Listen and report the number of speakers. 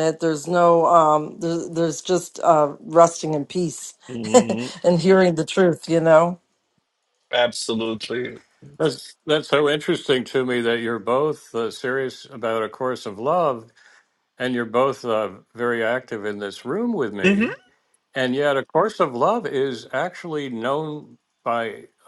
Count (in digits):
3